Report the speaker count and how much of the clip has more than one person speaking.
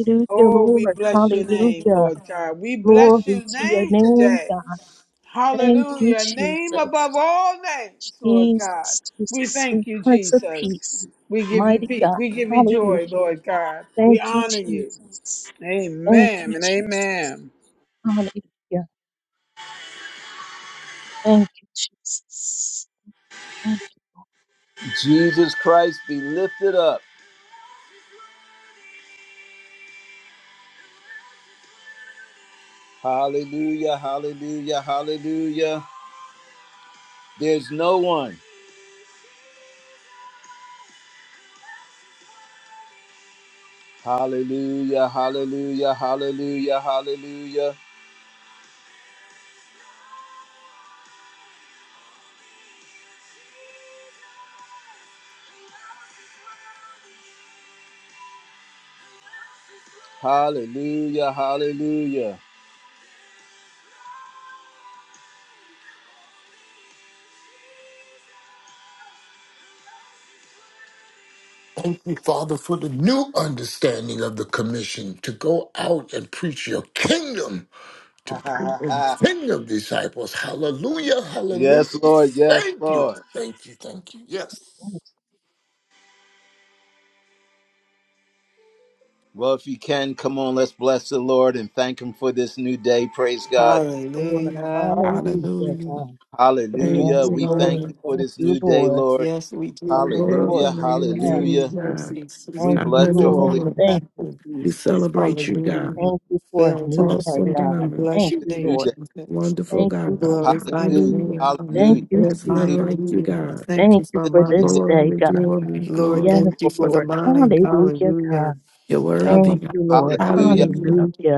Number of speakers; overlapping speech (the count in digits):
6, about 26%